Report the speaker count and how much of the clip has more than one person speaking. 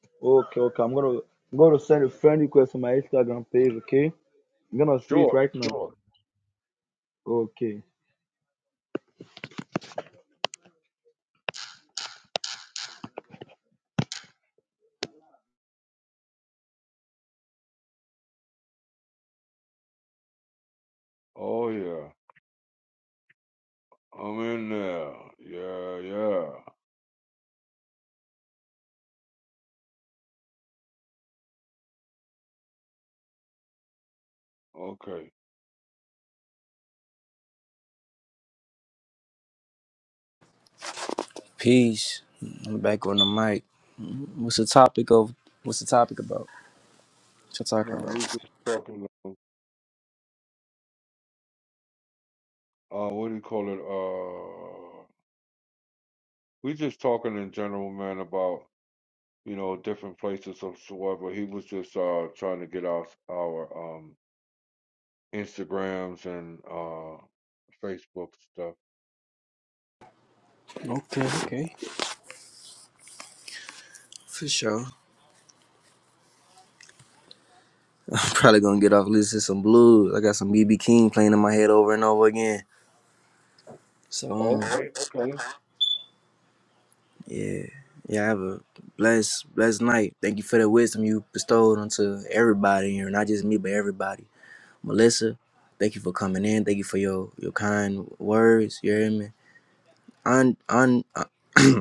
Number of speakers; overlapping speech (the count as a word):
three, about 1%